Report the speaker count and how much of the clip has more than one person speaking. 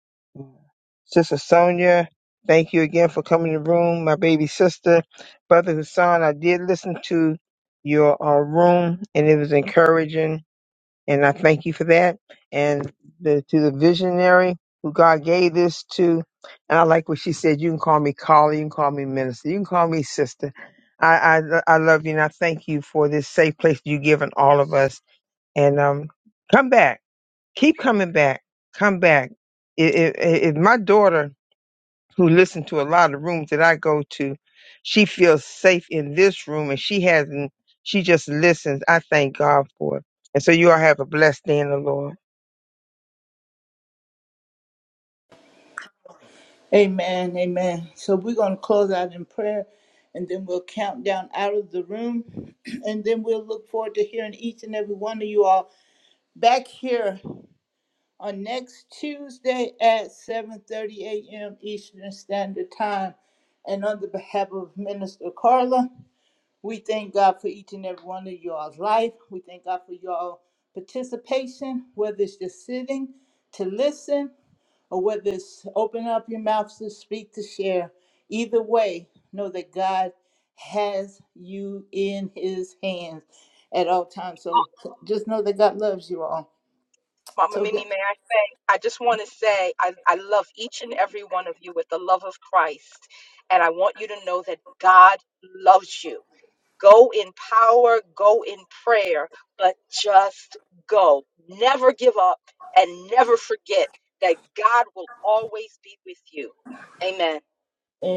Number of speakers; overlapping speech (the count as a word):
three, under 1%